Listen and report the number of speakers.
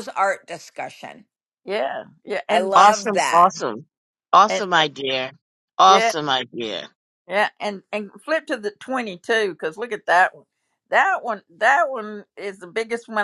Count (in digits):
3